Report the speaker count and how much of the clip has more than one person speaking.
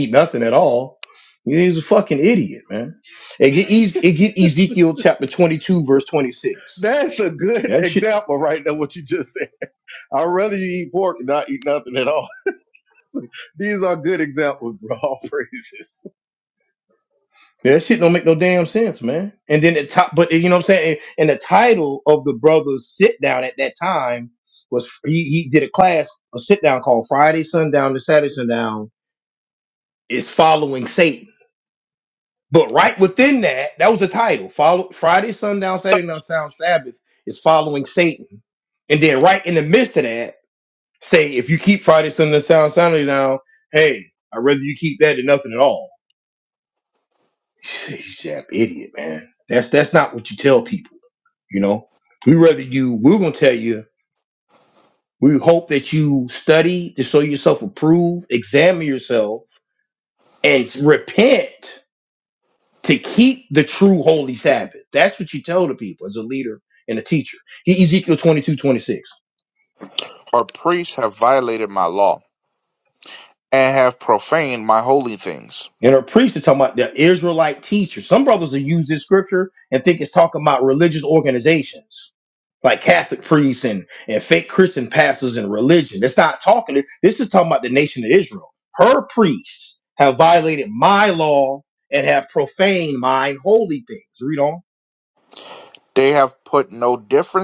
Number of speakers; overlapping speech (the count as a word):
three, under 1%